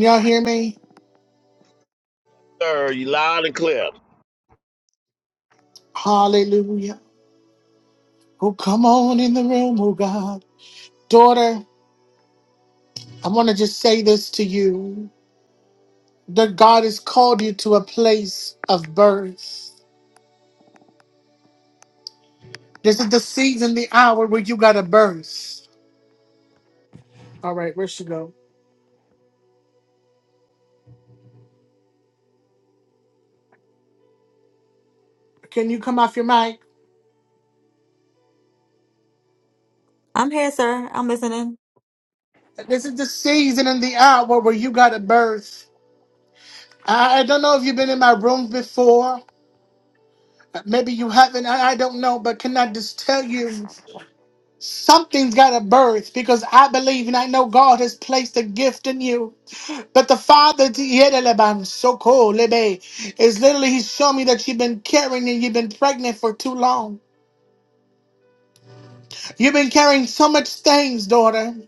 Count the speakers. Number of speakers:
3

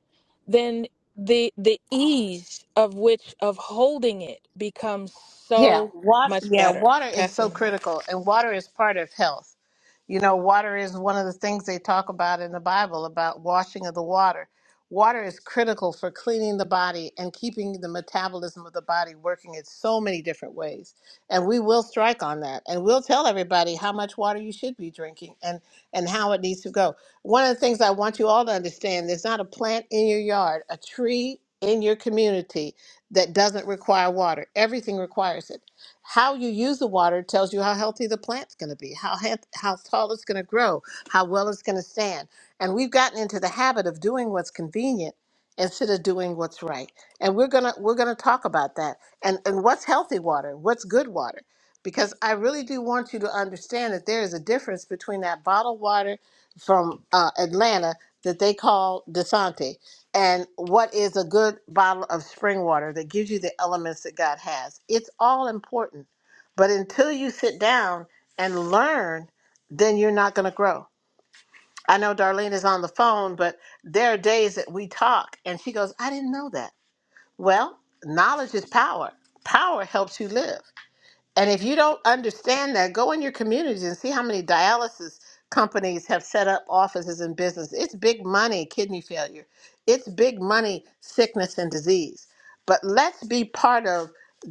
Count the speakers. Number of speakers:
2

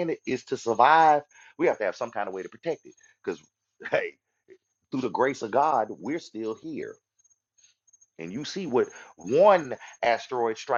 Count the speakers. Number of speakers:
1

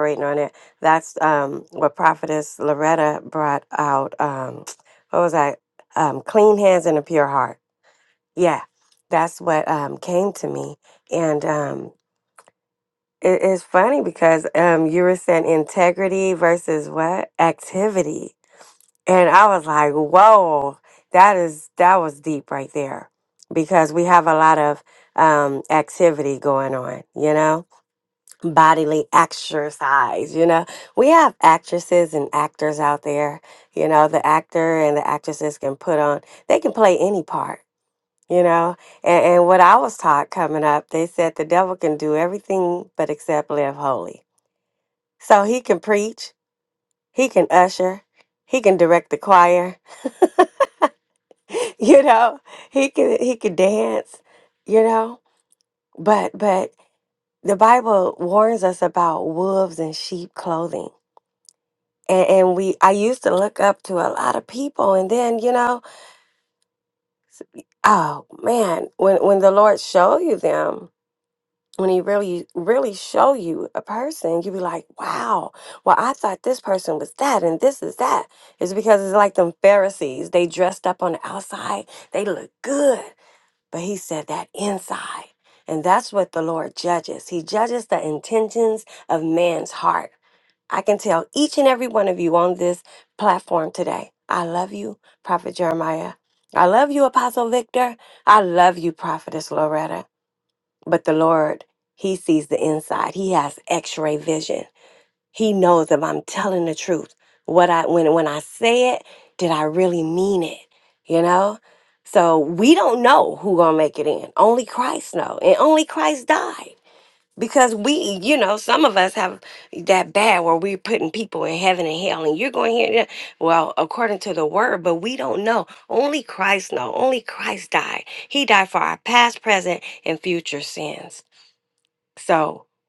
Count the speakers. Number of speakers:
1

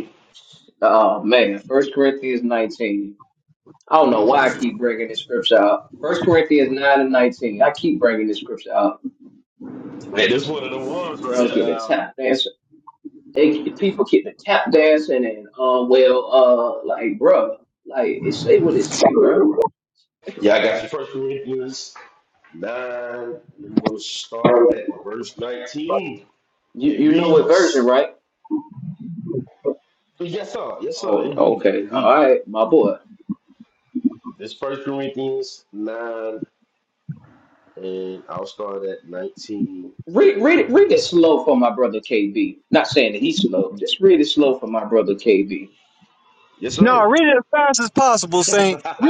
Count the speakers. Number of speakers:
3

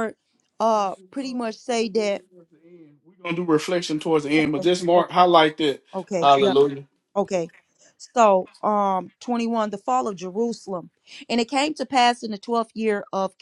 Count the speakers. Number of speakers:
2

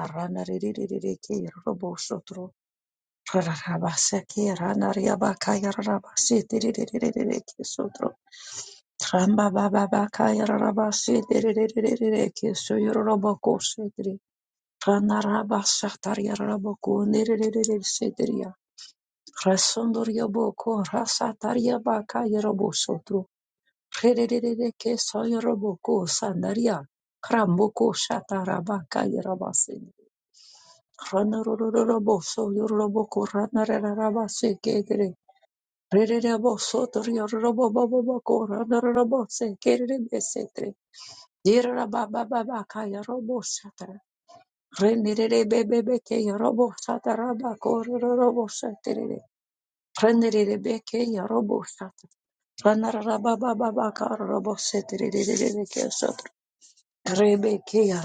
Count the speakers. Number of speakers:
1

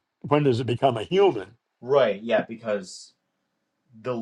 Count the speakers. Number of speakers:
2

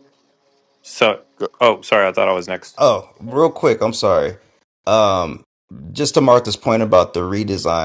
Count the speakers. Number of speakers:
2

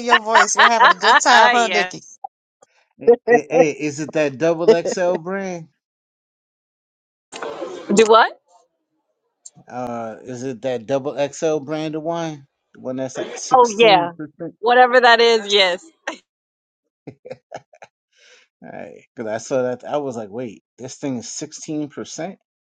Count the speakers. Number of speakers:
3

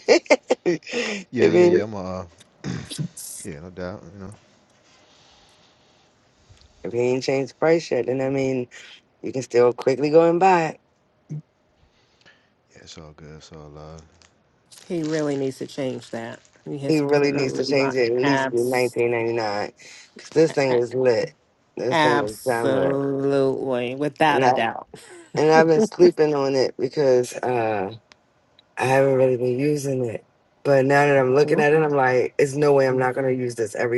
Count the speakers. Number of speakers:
3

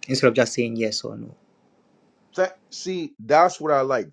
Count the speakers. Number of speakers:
2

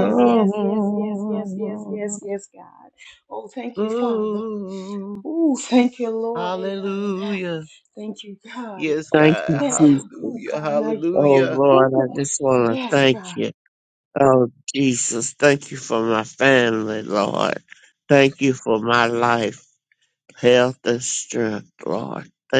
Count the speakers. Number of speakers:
3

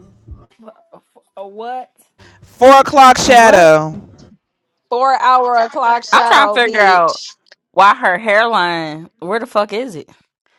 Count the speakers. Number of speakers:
3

